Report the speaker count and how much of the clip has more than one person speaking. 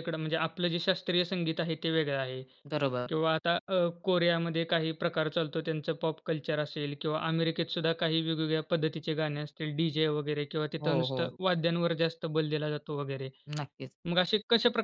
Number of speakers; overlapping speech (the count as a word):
two, about 3%